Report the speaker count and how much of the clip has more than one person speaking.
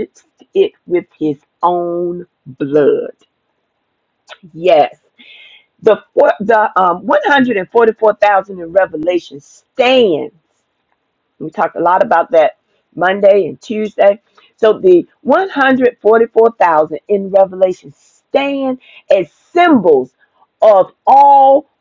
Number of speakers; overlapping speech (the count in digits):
1, no overlap